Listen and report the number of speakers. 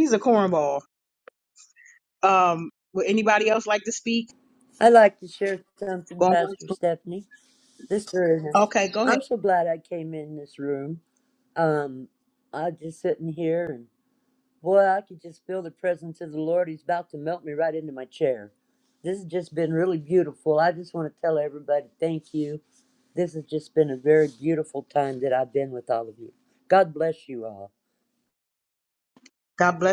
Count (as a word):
two